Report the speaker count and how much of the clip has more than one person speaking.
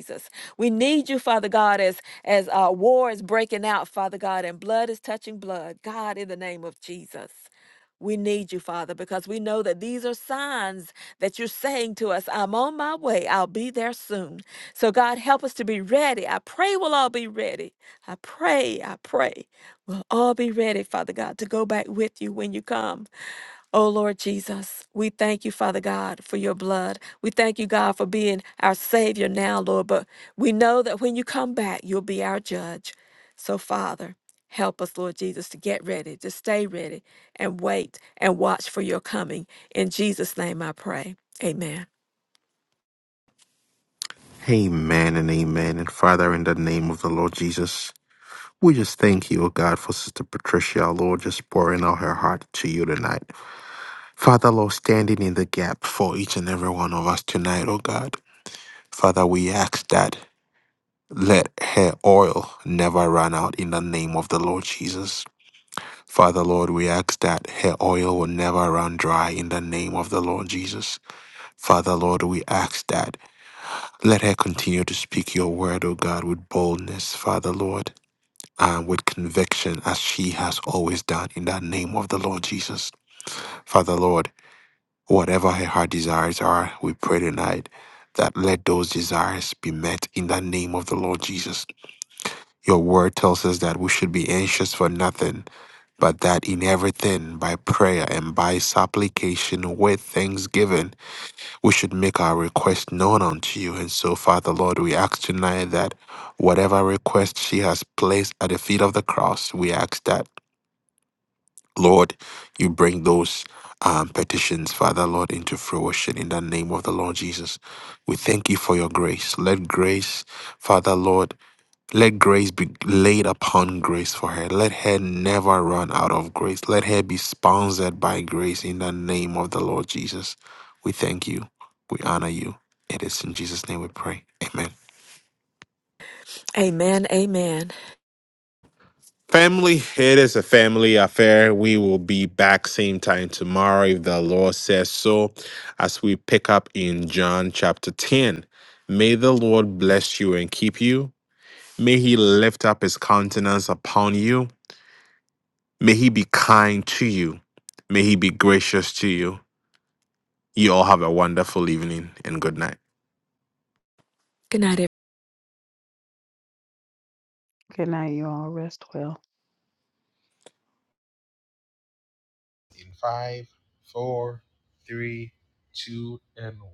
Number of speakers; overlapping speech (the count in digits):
3, no overlap